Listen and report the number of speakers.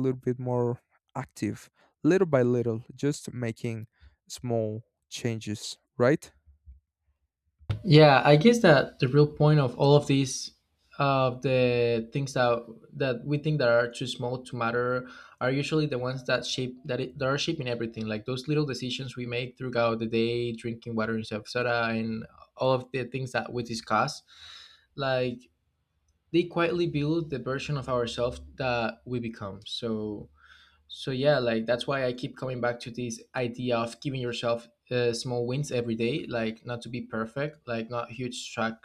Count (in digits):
2